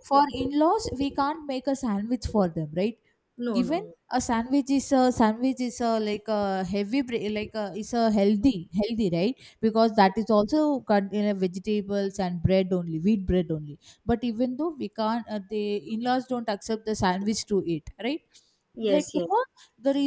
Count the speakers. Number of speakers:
2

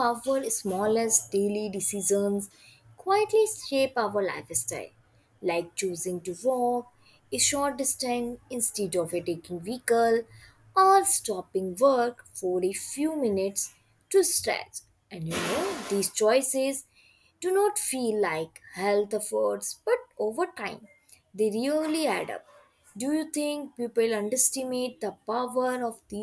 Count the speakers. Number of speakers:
1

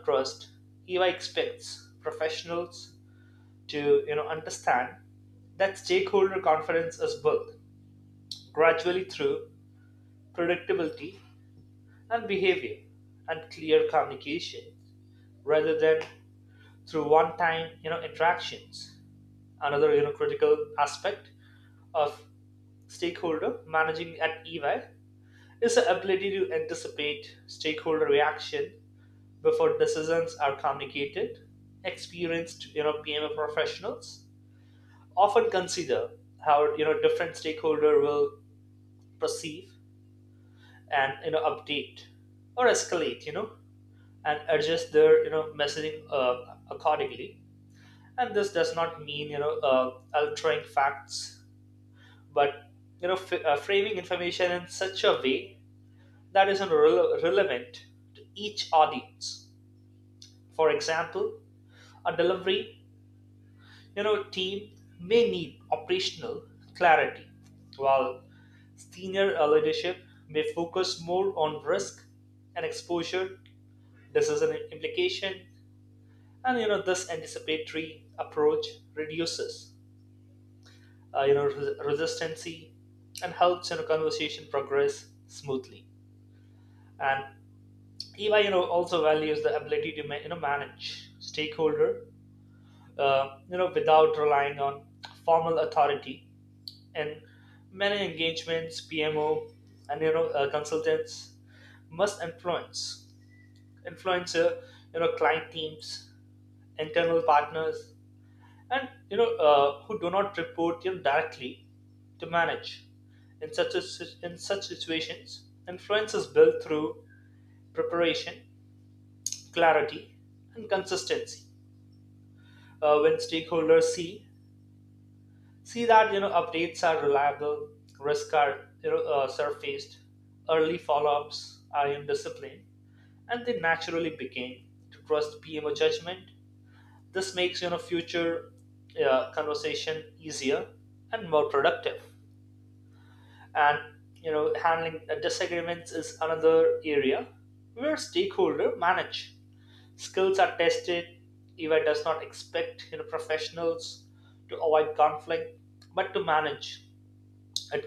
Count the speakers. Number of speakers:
1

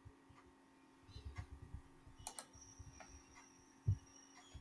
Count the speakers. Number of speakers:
0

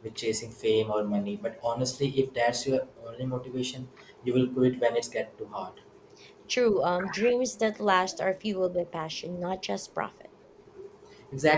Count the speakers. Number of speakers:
2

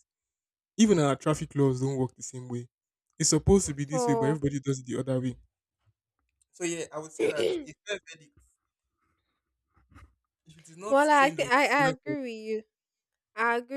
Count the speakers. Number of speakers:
2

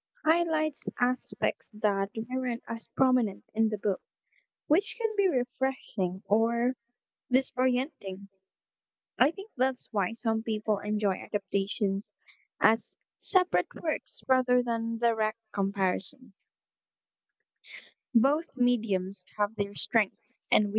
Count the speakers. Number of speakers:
1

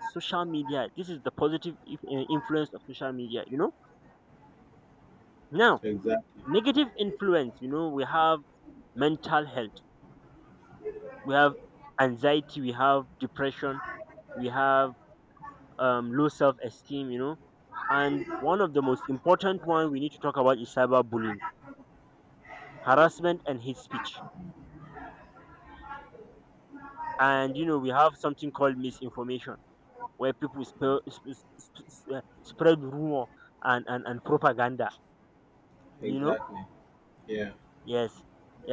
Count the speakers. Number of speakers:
2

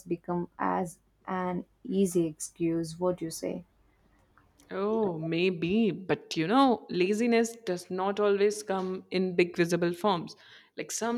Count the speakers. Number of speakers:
2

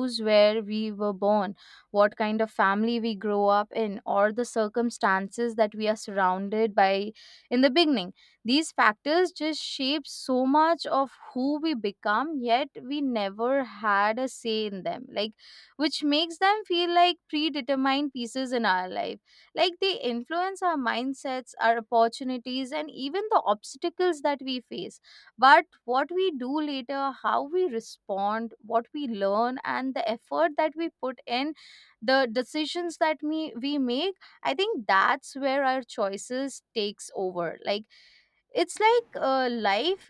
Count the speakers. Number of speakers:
1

